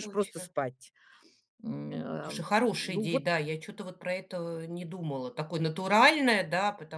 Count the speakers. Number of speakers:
two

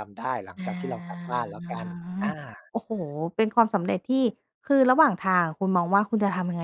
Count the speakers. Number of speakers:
two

